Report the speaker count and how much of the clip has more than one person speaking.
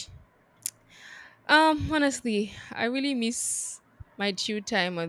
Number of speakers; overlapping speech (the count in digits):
1, no overlap